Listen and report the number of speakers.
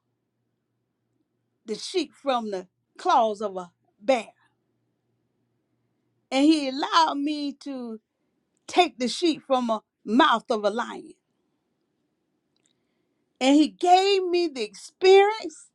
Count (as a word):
one